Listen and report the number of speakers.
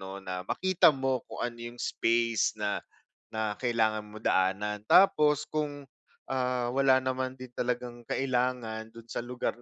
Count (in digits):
1